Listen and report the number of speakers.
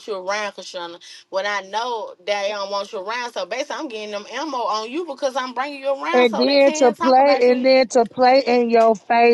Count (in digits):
2